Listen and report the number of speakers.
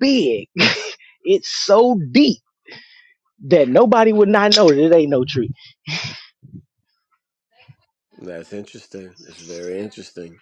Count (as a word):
two